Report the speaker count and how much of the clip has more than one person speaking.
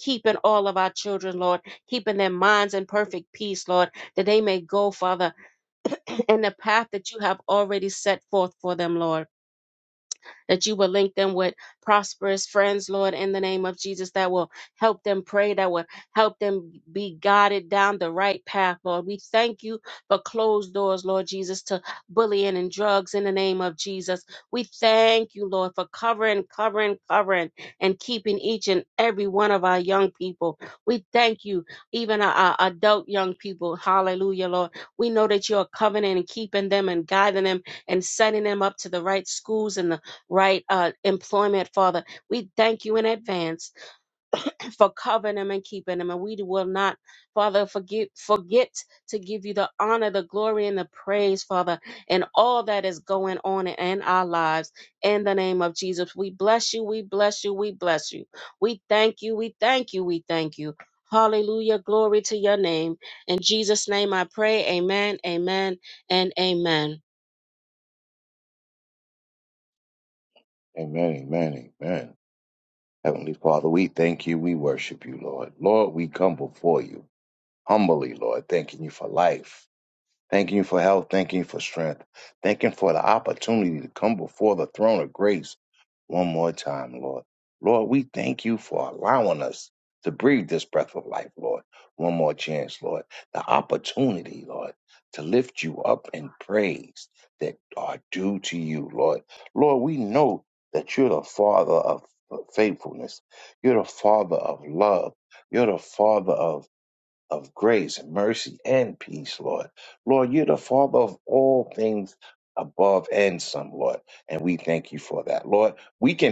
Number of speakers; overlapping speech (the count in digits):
2, no overlap